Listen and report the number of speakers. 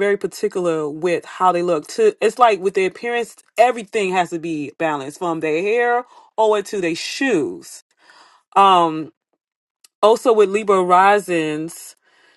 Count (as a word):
one